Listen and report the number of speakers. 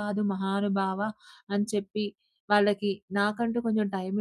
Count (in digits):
1